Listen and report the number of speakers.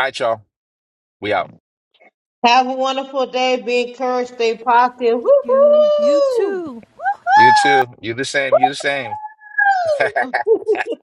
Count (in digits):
3